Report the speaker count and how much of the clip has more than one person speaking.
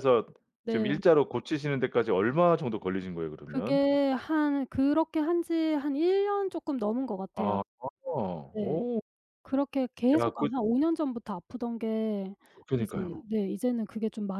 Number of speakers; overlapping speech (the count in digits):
2, about 13%